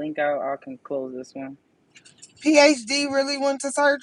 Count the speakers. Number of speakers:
two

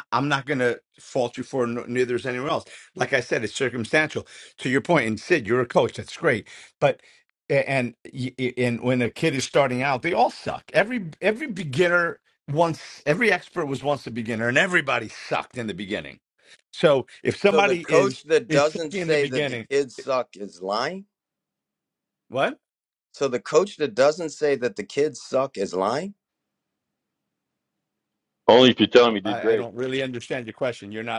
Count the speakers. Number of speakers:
three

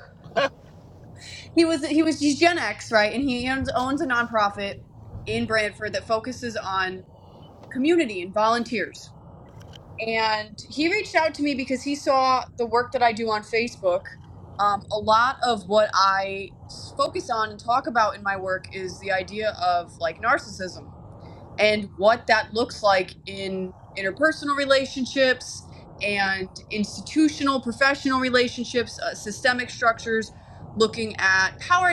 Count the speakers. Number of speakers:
one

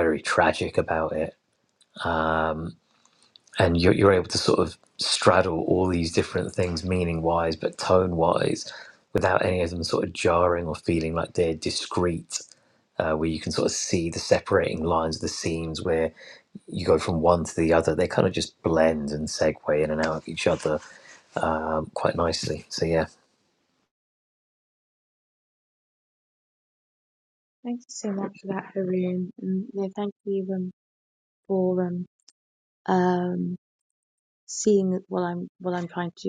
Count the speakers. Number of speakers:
two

